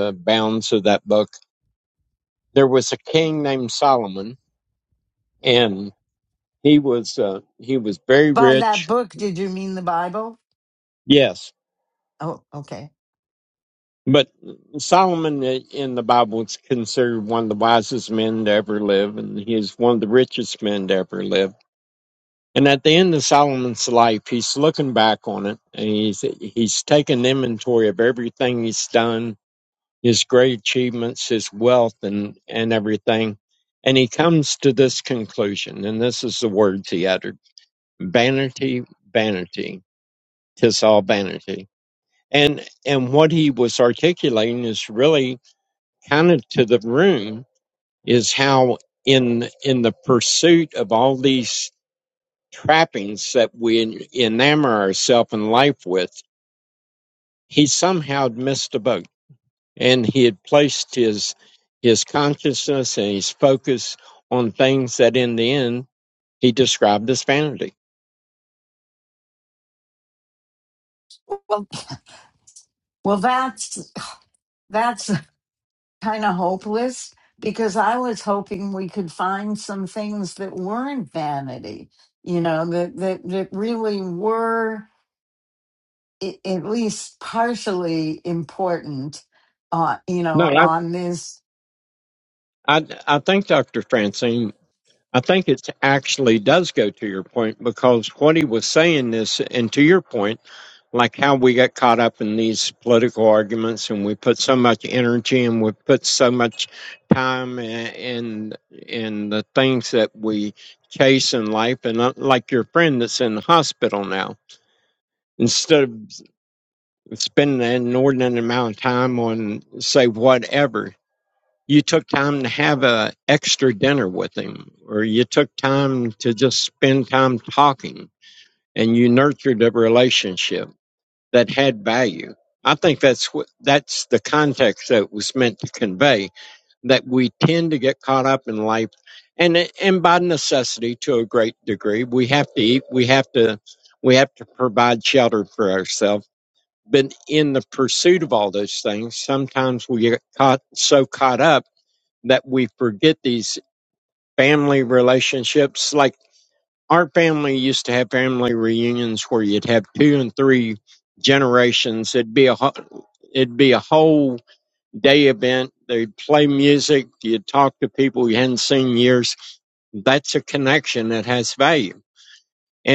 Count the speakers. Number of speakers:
2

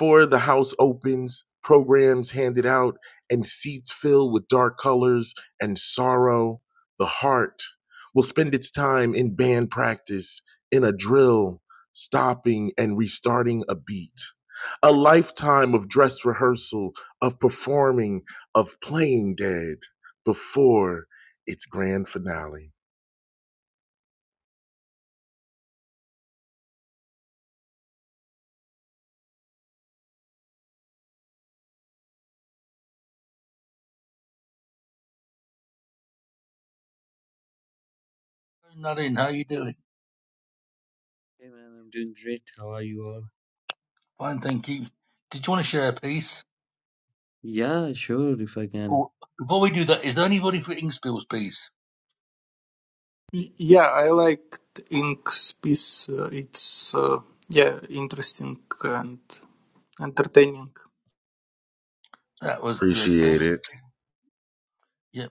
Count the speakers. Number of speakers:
4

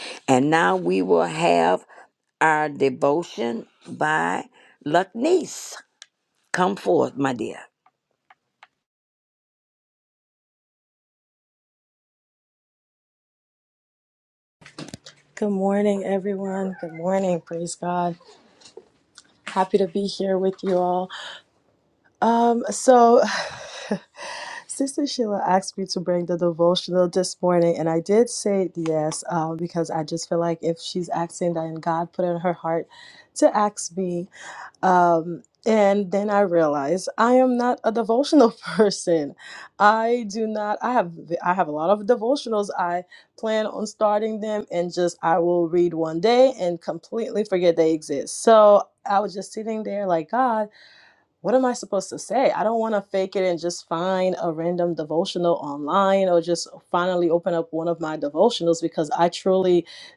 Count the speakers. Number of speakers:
2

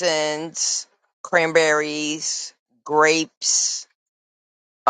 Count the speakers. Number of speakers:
1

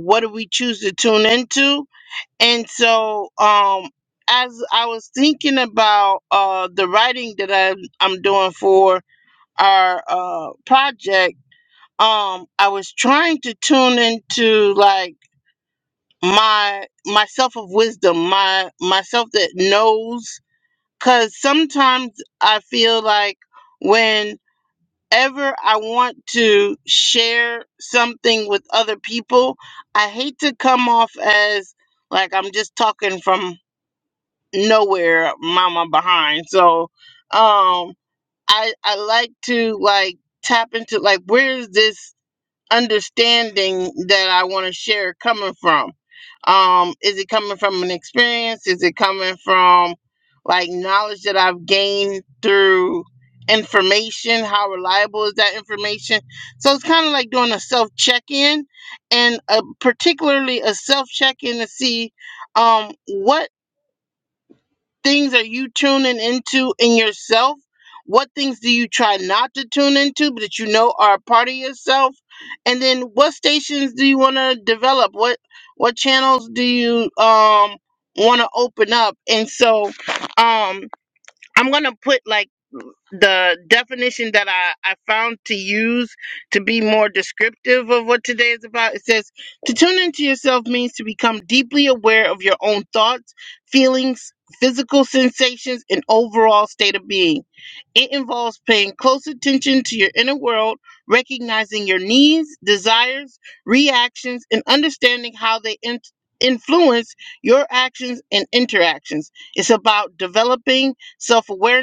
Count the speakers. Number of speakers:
1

